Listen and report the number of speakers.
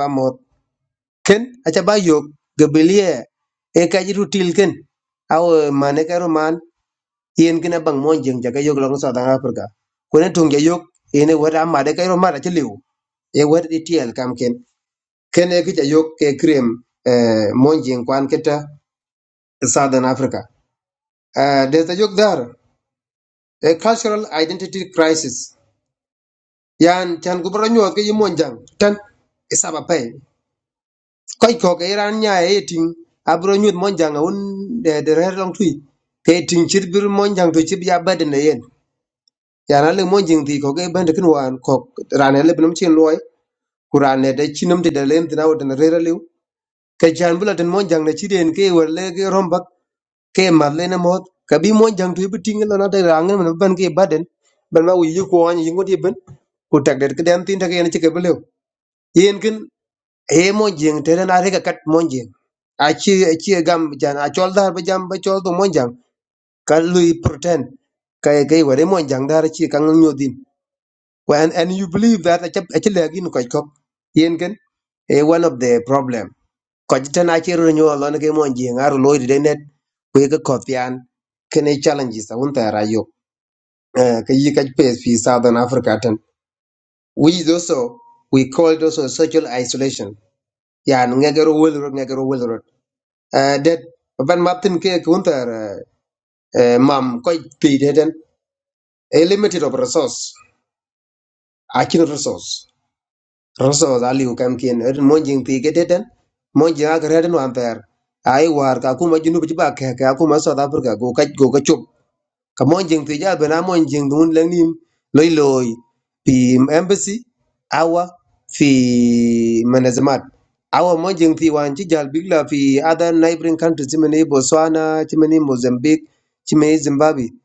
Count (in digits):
1